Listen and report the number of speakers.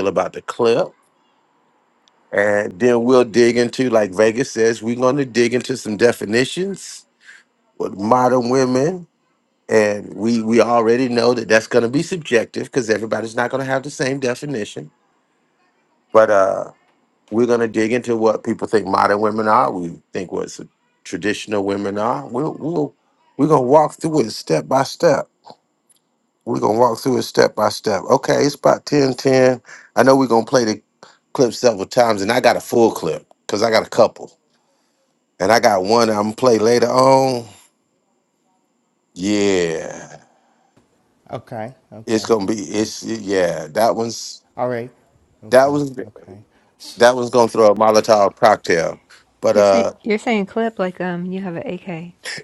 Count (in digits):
3